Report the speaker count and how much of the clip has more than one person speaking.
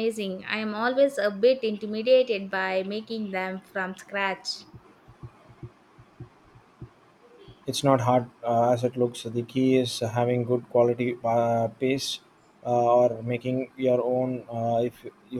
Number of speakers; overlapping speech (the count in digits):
2, no overlap